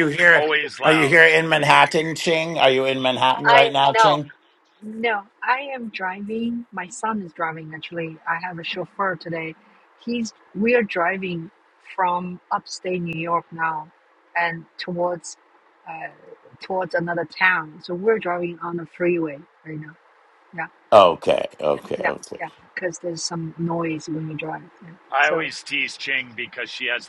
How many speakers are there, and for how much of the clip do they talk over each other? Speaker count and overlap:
3, about 5%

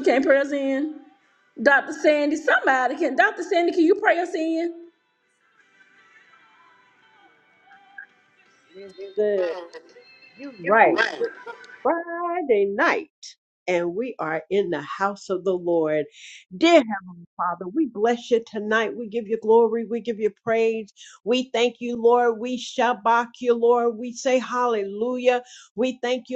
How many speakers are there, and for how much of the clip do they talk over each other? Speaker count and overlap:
2, no overlap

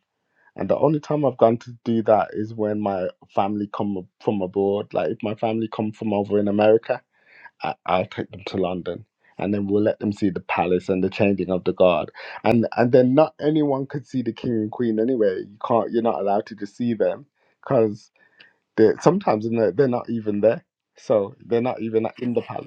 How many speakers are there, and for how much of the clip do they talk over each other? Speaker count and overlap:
1, no overlap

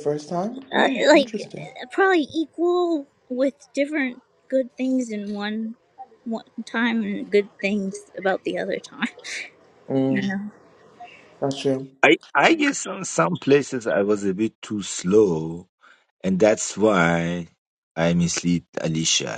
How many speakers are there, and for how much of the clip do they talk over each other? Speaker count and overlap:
3, about 5%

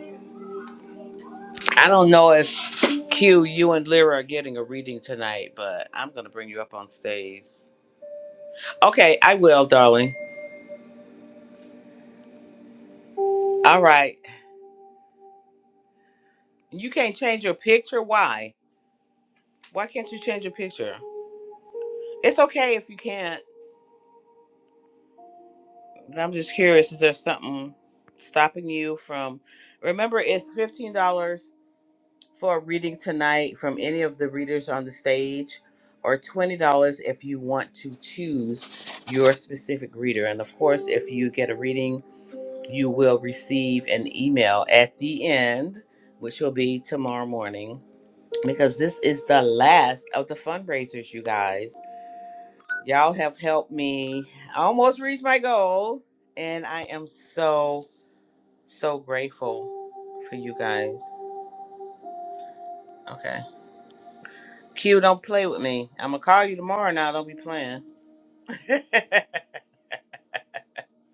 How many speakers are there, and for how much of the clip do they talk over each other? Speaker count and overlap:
1, no overlap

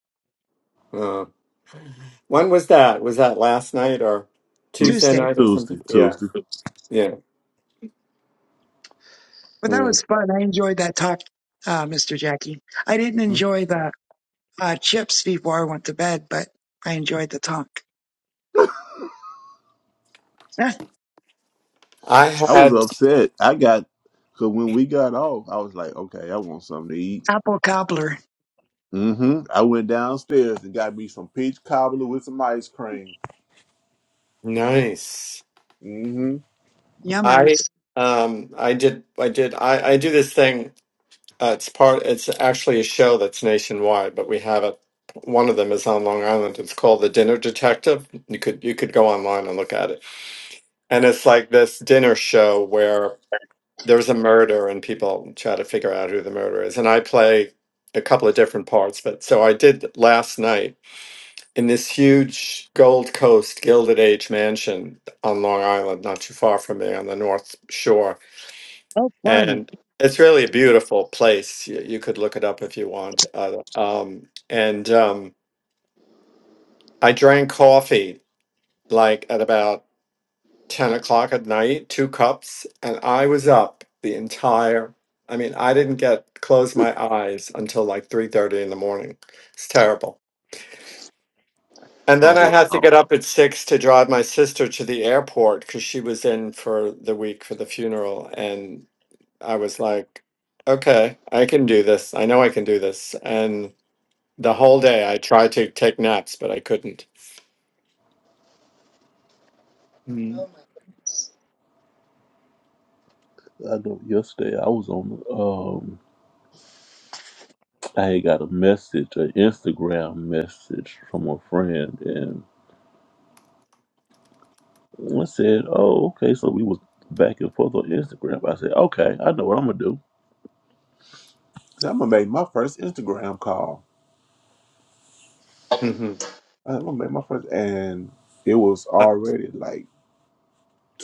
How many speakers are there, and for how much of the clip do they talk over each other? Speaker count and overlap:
3, about 2%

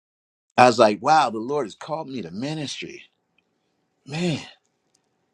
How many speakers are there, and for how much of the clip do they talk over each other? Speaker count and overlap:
1, no overlap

